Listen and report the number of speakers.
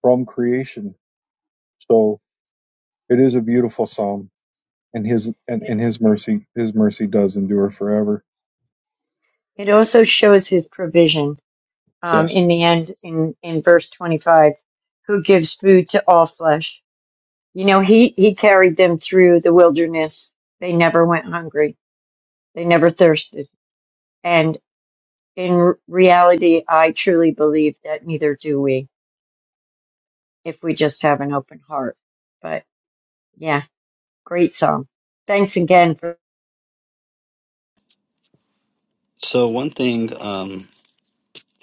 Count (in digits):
3